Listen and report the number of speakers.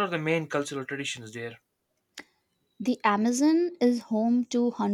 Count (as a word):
two